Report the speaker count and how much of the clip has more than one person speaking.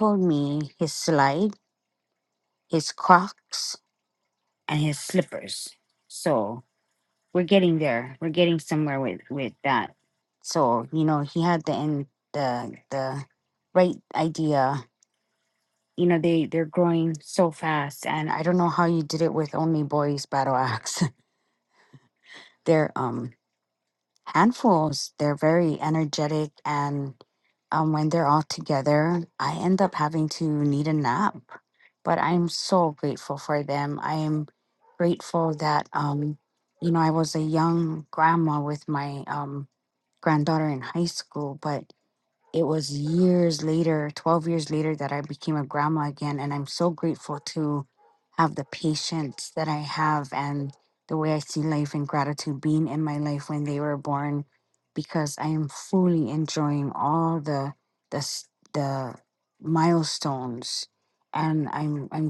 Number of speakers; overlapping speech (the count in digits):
1, no overlap